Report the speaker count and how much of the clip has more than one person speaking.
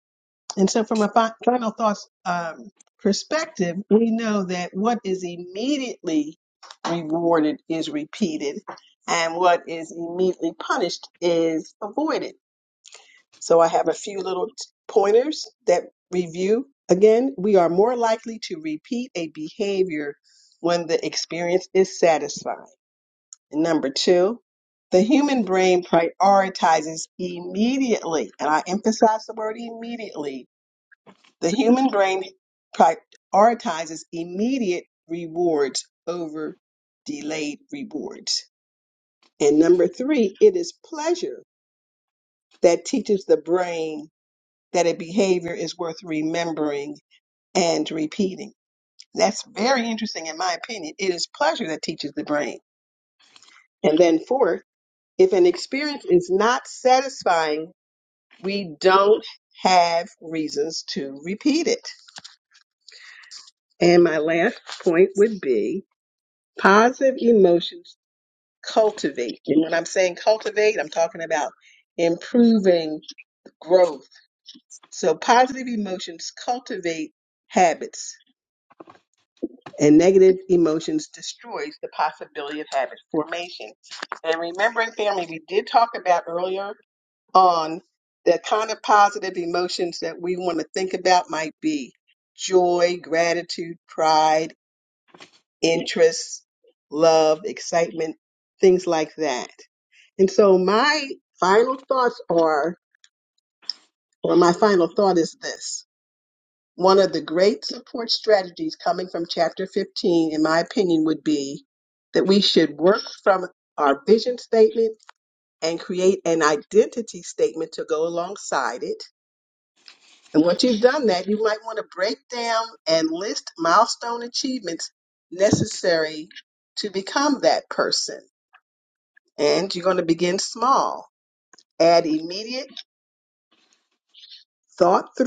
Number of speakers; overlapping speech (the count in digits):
1, no overlap